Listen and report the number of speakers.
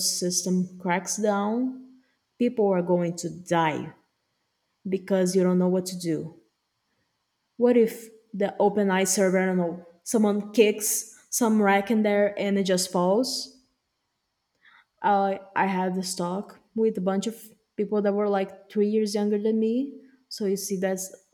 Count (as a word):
one